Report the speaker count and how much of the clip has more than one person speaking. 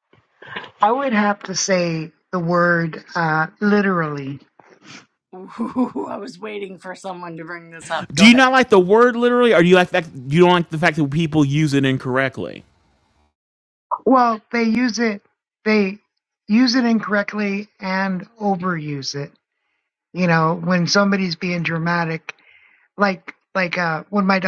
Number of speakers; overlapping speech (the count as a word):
three, about 1%